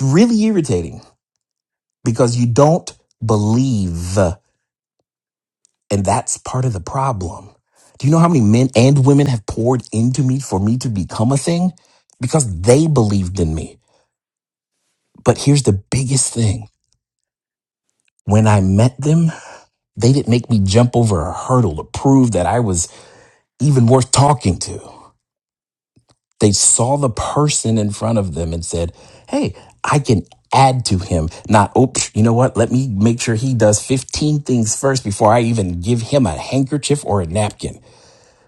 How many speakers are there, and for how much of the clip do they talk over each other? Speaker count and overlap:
1, no overlap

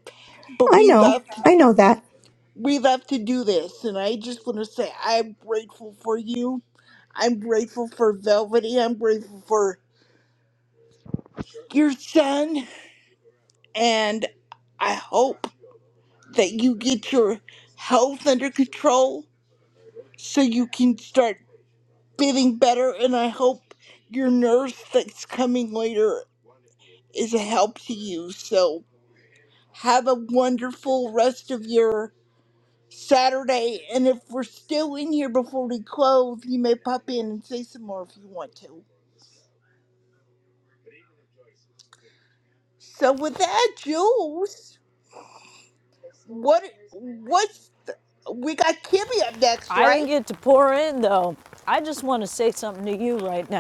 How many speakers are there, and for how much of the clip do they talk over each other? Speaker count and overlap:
3, about 2%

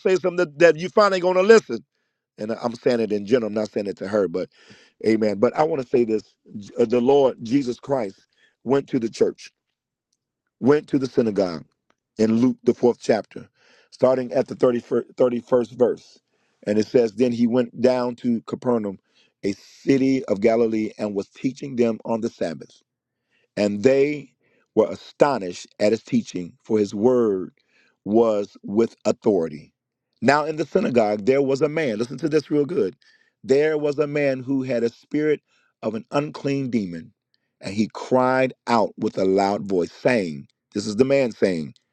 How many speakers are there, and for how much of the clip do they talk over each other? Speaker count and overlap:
1, no overlap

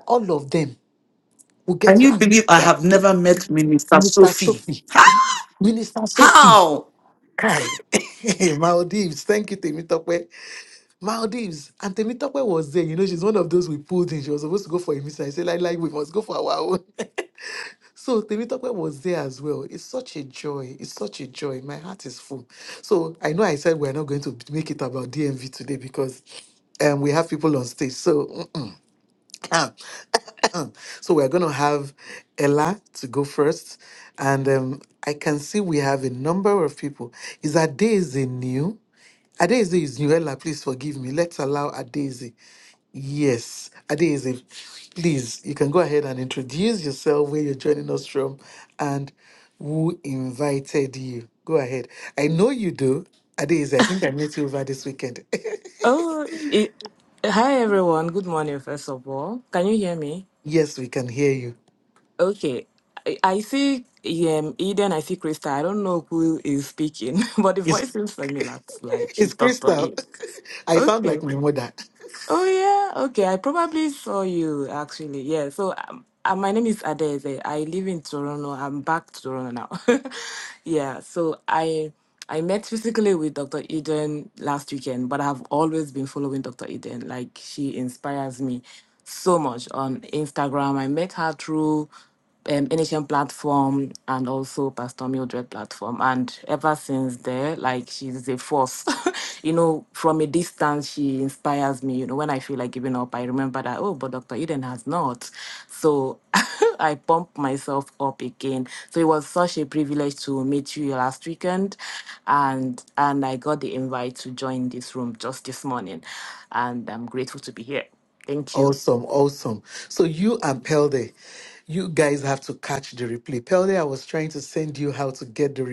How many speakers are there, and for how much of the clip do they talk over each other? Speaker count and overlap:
3, about 3%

